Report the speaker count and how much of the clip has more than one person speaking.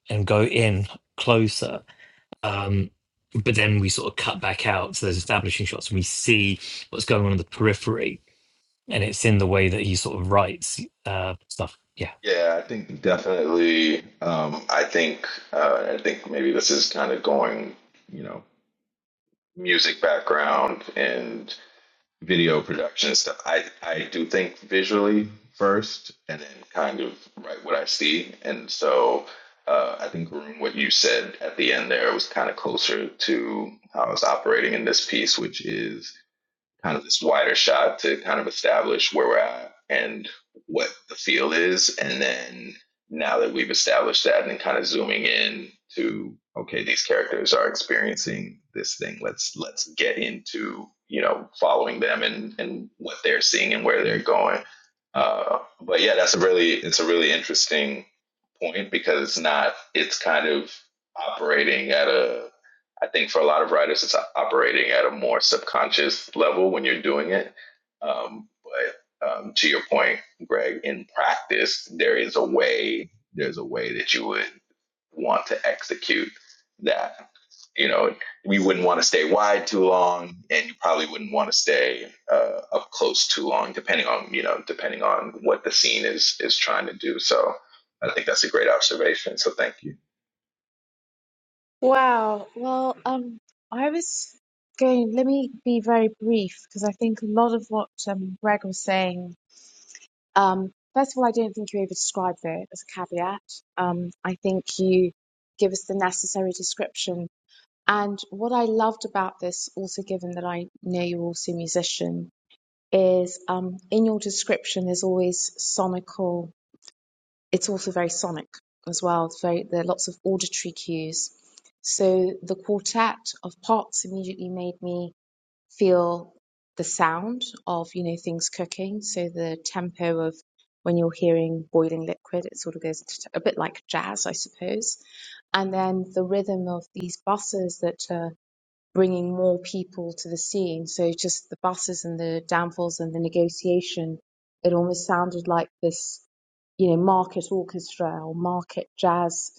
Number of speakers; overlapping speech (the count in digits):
3, no overlap